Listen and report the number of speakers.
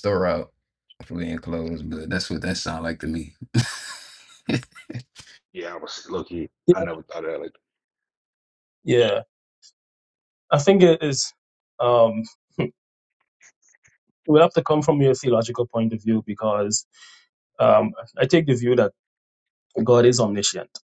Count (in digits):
3